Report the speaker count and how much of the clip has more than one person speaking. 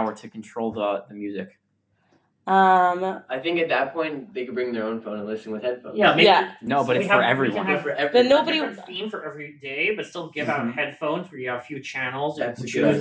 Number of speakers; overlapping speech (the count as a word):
four, about 27%